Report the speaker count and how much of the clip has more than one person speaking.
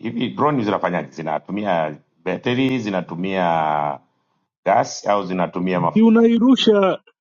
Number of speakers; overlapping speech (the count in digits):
2, about 1%